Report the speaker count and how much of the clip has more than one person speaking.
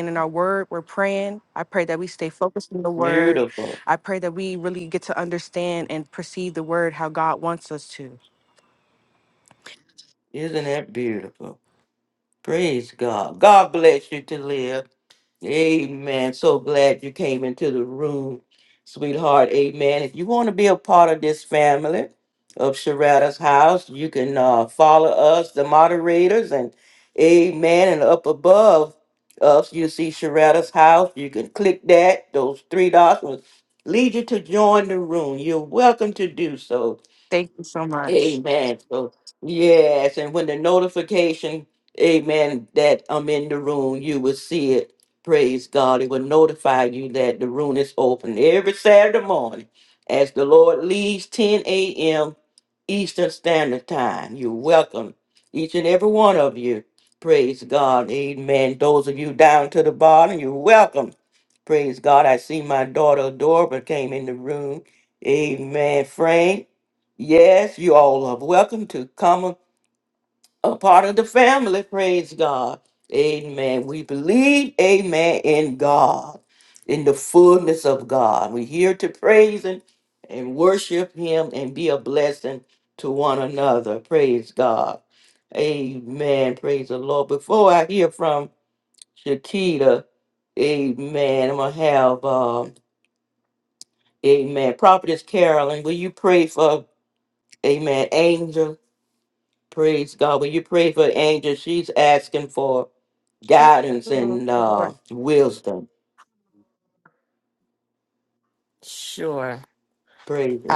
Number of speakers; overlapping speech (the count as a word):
three, about 1%